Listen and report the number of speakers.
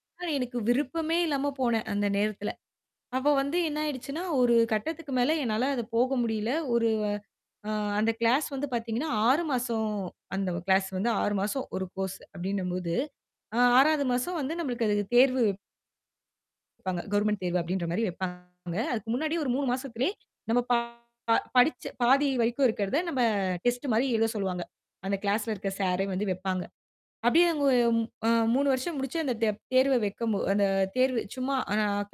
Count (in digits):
1